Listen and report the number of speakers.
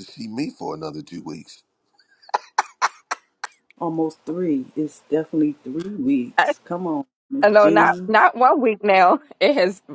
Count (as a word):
three